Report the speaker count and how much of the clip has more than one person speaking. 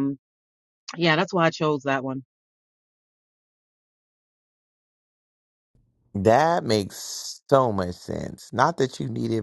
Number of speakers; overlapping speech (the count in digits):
2, no overlap